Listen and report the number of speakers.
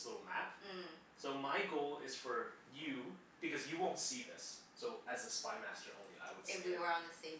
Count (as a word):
two